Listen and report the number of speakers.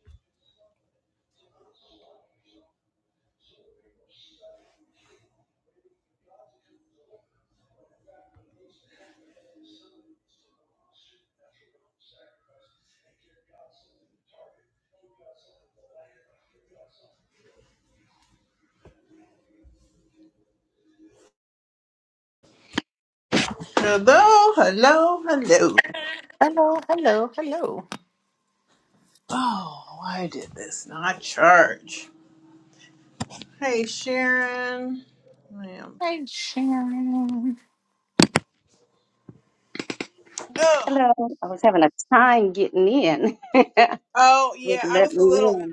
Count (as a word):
three